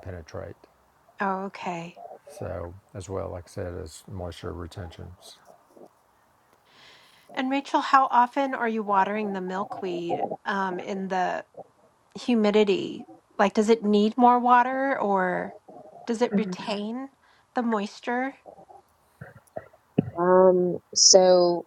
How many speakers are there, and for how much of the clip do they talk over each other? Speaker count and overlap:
three, no overlap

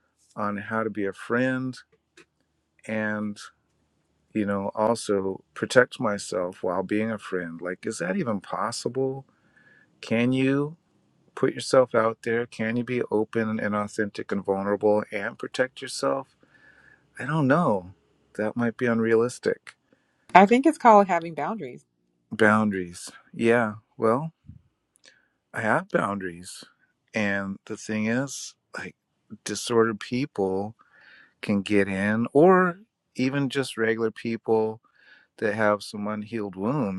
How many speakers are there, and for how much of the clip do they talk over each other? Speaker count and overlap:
two, no overlap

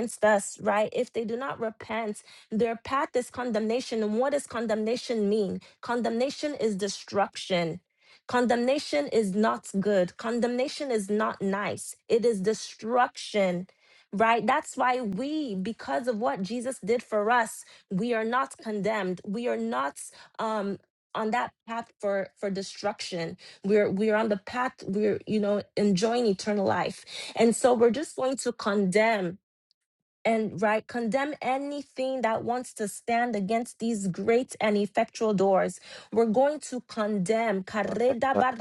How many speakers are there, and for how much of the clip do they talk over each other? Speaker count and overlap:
one, no overlap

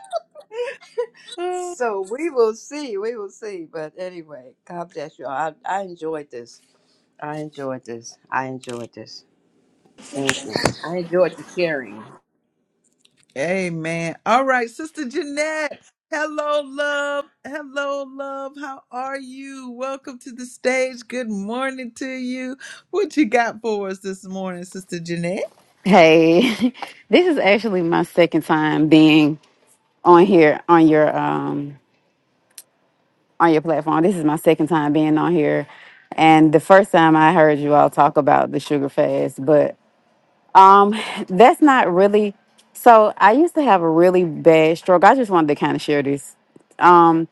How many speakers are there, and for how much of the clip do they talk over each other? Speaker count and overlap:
three, no overlap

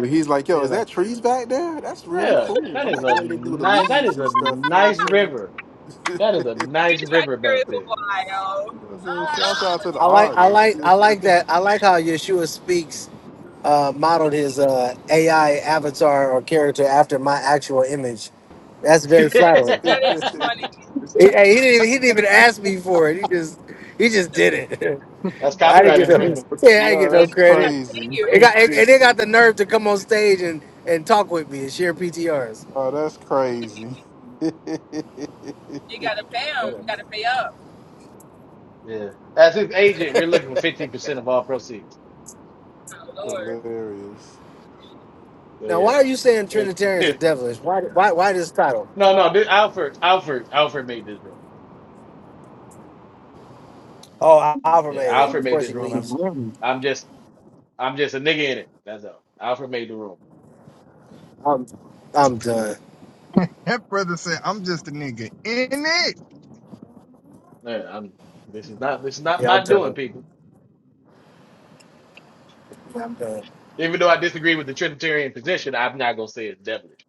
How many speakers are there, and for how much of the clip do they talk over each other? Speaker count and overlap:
five, about 17%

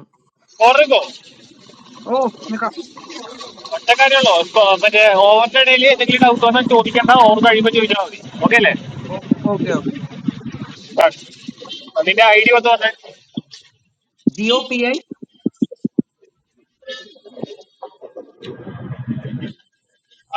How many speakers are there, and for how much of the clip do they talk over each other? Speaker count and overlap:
two, no overlap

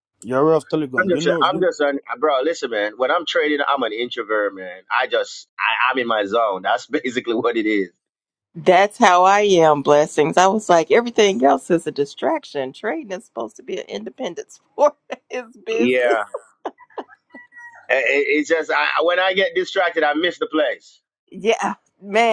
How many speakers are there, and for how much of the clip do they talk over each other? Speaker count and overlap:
three, about 5%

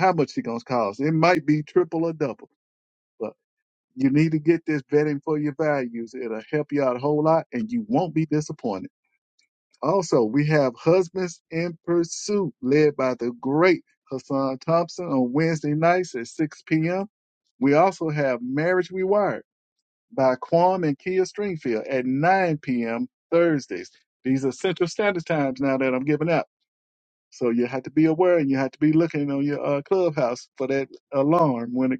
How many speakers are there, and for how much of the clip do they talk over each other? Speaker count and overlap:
one, no overlap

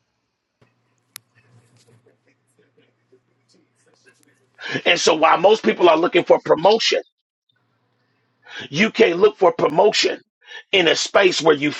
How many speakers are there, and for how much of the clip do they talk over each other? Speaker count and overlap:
one, no overlap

